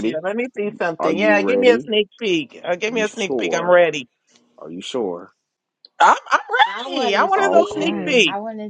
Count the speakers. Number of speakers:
3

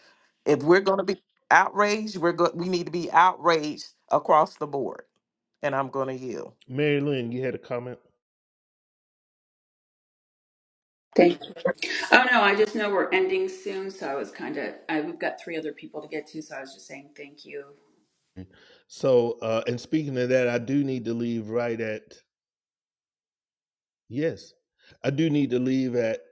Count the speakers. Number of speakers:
3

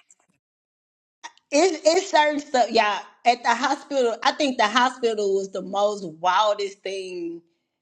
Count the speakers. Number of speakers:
1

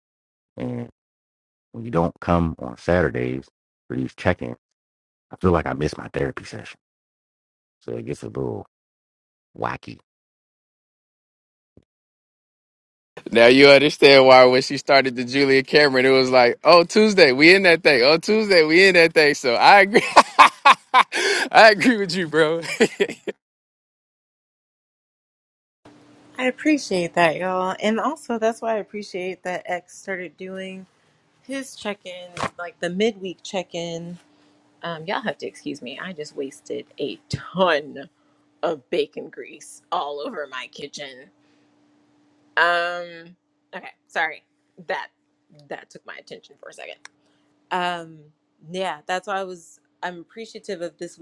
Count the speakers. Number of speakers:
3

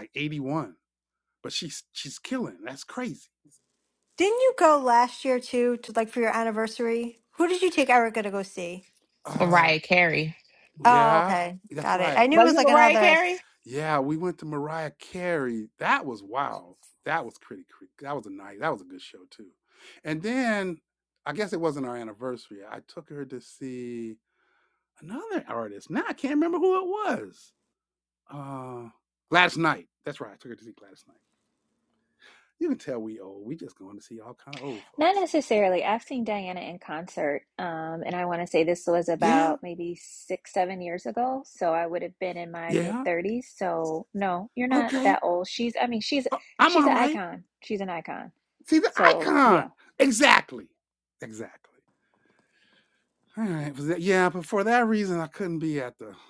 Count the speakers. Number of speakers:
4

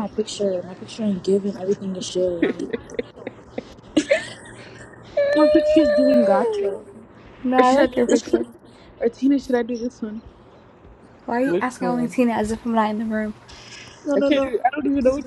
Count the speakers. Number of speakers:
3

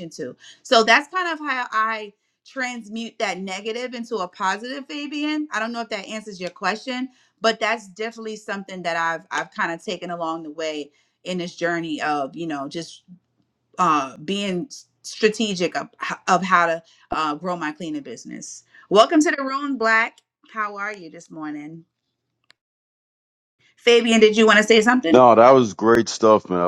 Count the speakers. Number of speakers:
2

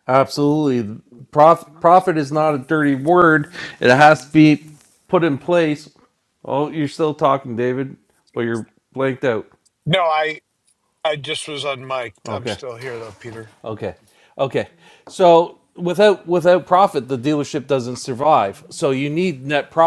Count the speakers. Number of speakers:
2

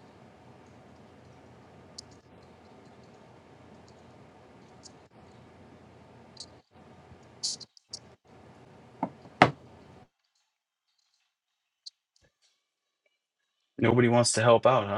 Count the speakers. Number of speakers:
1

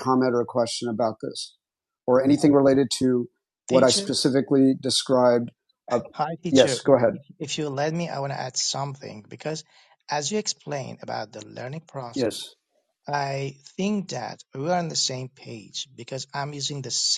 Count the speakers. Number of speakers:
2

